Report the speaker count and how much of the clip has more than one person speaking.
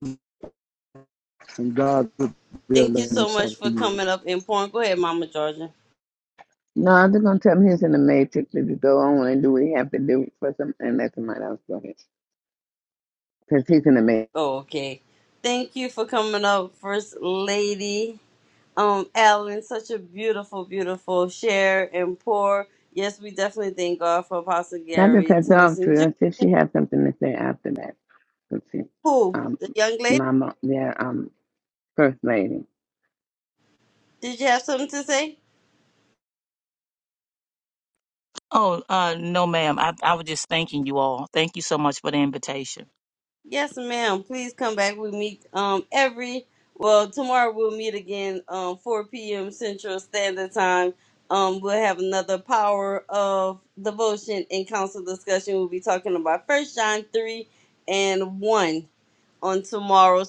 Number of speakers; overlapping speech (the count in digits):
4, about 4%